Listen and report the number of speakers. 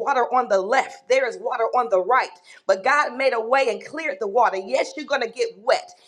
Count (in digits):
1